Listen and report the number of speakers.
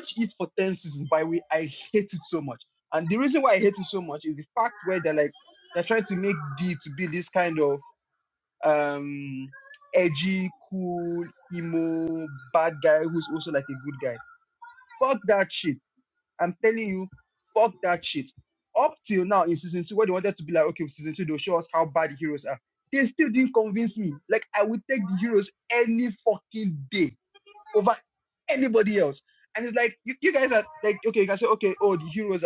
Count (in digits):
1